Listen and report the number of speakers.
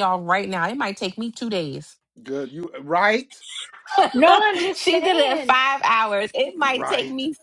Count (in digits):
3